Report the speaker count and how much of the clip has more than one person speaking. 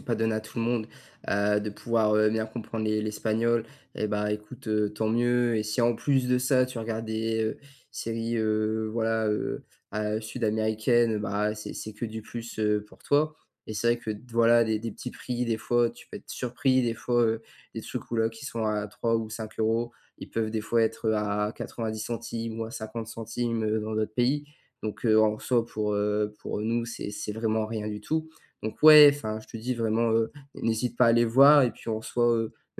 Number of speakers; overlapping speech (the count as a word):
one, no overlap